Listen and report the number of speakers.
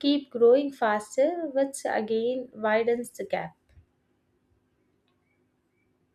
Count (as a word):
one